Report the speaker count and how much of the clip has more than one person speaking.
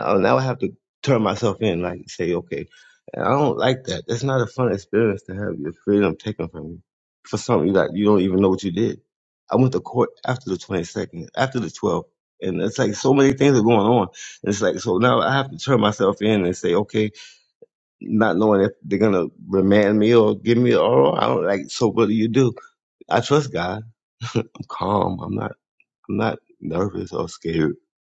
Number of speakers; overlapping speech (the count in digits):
1, no overlap